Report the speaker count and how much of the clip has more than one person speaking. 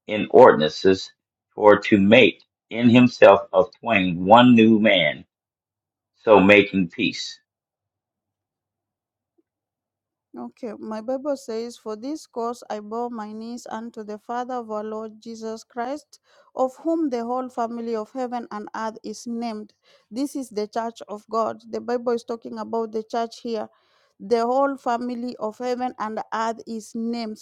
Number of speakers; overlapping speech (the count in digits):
2, no overlap